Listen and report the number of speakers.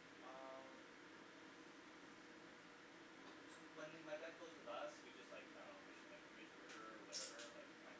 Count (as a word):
one